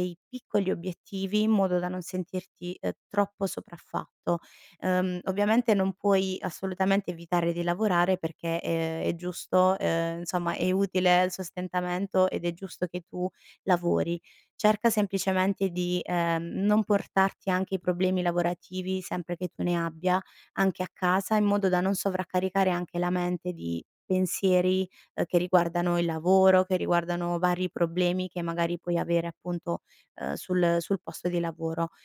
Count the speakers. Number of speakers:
1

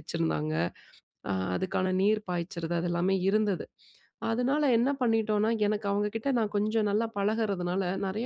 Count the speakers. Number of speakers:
1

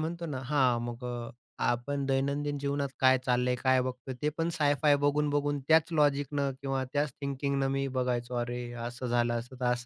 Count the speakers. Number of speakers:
1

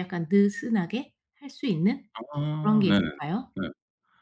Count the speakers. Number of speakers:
2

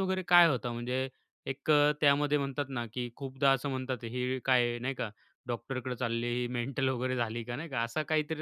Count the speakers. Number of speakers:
1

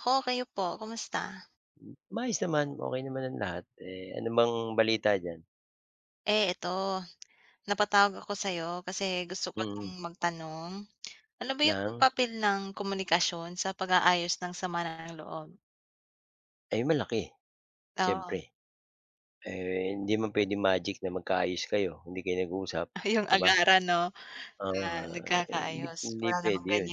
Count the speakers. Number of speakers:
2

